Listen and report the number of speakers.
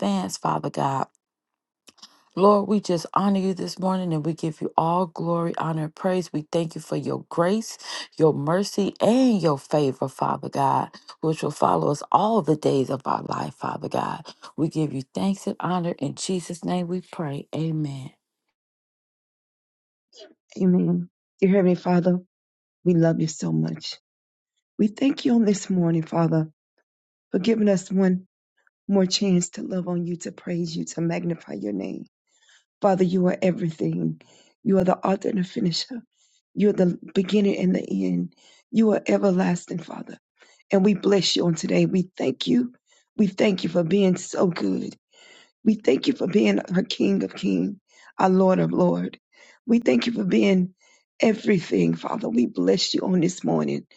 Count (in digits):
2